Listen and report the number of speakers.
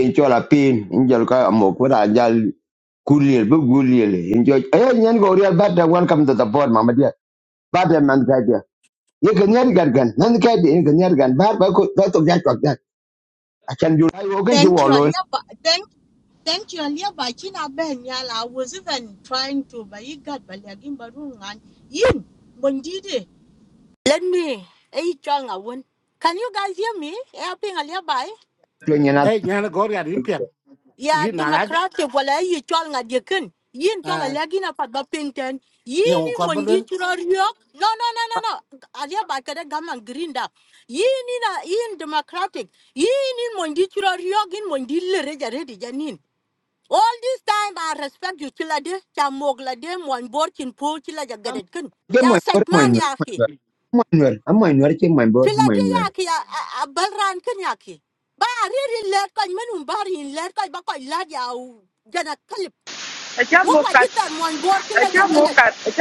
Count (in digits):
4